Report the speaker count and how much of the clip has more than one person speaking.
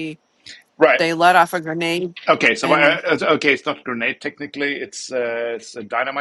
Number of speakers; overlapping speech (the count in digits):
2, about 6%